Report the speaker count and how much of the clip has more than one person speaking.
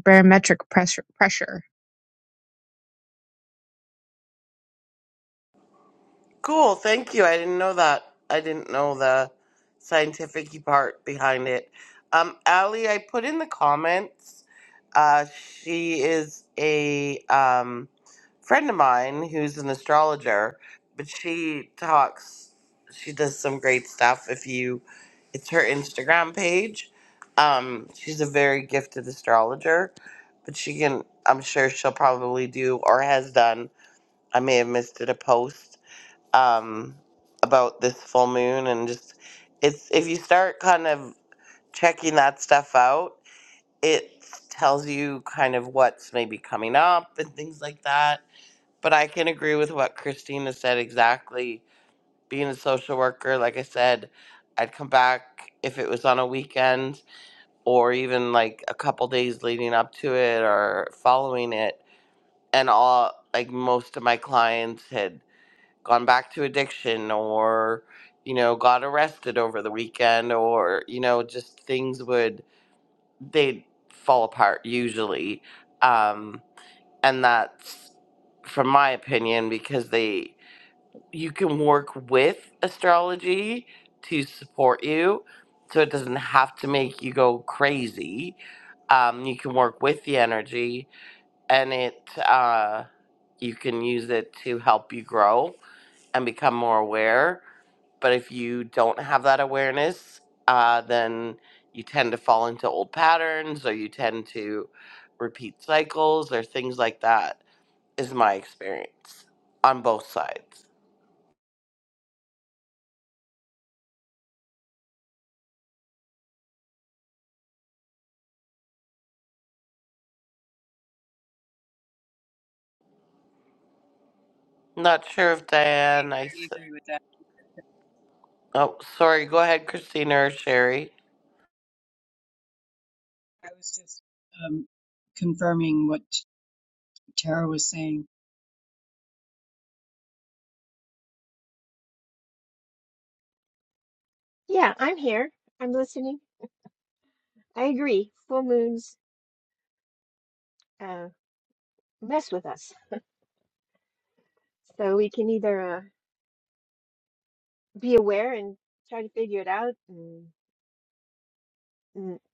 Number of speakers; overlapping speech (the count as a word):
four, under 1%